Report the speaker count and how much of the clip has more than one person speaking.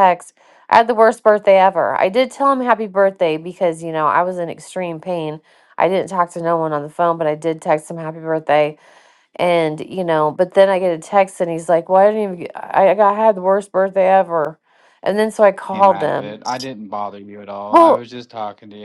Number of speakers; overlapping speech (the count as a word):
two, about 5%